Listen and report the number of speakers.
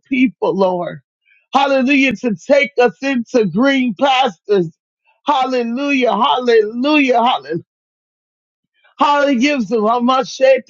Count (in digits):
1